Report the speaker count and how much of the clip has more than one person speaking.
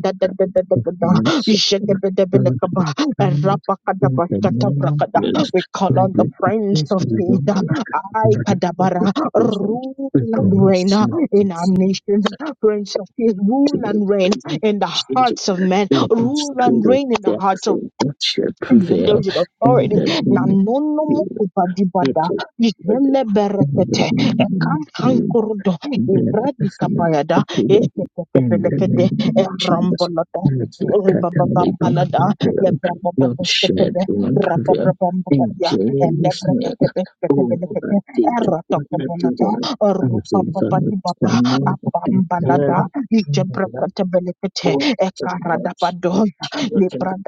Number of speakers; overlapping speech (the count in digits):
2, about 48%